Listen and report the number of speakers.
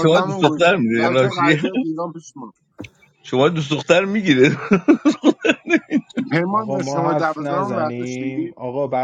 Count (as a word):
three